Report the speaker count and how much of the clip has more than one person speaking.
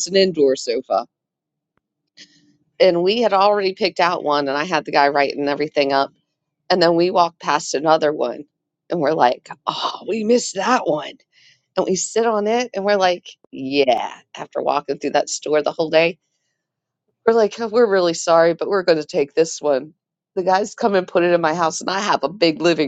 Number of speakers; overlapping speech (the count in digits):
1, no overlap